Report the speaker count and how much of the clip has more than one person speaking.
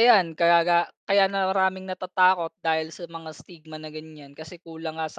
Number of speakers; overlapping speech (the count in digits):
1, no overlap